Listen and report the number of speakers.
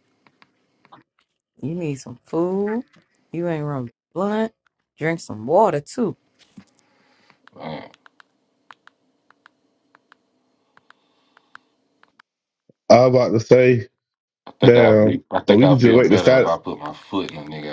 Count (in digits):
3